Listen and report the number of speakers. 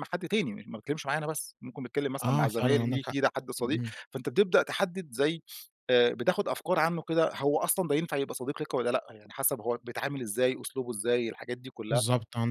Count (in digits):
2